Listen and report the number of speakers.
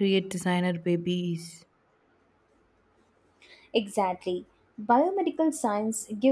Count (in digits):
2